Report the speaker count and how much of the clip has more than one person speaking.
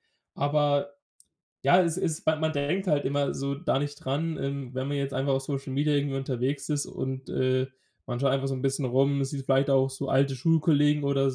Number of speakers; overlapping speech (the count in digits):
1, no overlap